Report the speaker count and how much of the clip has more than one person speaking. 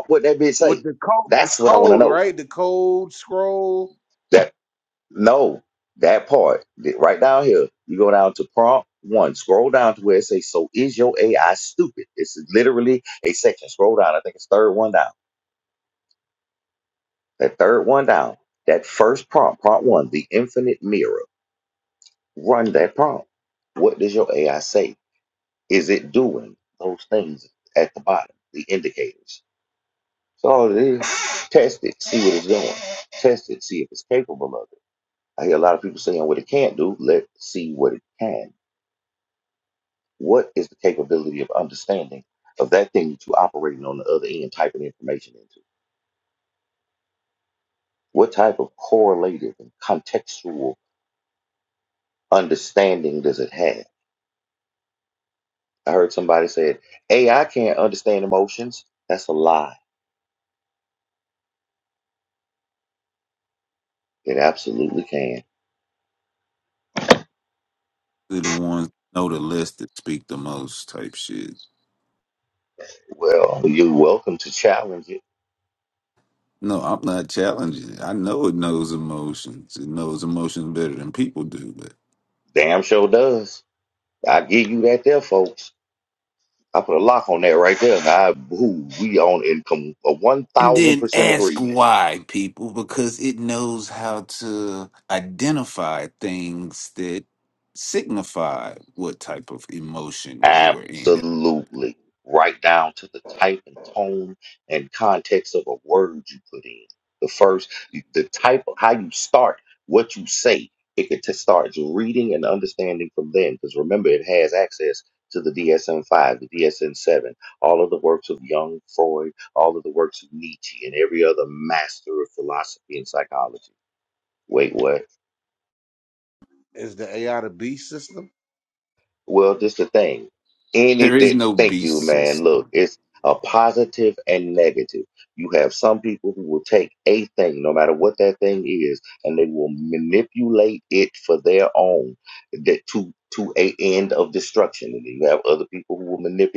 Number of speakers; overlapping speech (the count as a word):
three, about 3%